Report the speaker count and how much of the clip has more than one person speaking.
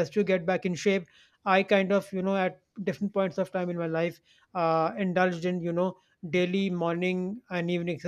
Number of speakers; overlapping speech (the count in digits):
1, no overlap